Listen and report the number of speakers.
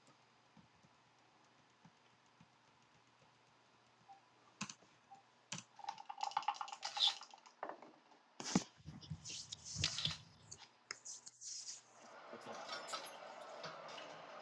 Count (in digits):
0